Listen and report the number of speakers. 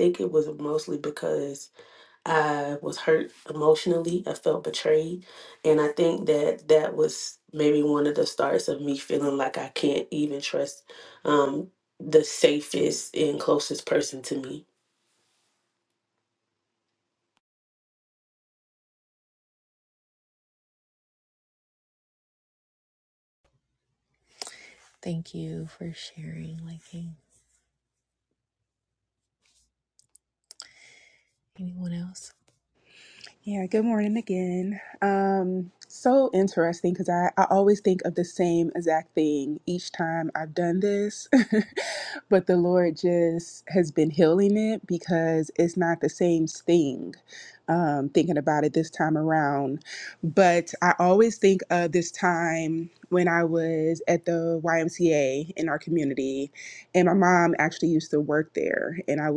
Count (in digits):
3